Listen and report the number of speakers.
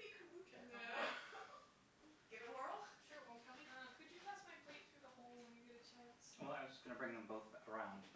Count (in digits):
3